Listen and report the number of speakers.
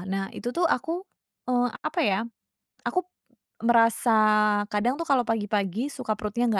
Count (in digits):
1